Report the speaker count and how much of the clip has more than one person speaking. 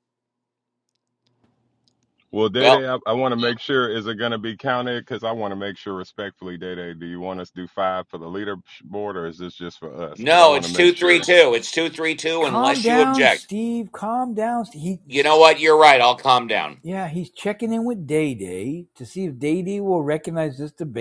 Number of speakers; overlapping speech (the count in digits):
3, about 11%